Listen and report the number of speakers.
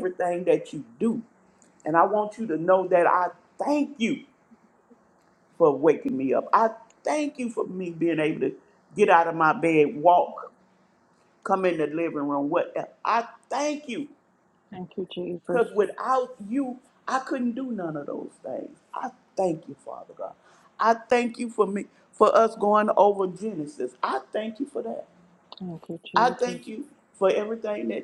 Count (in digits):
2